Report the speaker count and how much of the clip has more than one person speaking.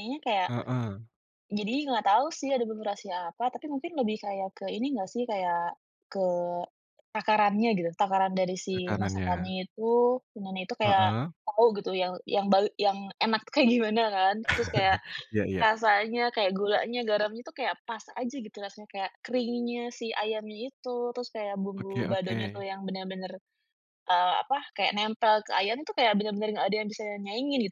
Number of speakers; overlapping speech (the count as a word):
two, about 7%